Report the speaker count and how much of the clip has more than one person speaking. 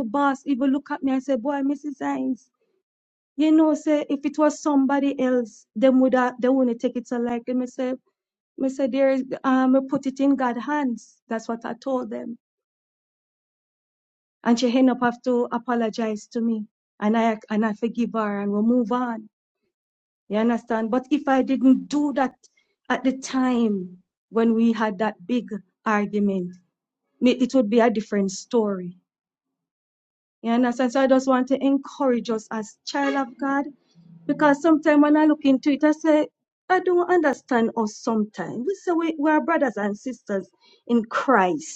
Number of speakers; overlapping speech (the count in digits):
1, no overlap